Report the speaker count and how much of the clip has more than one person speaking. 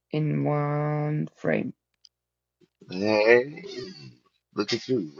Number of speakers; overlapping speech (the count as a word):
two, no overlap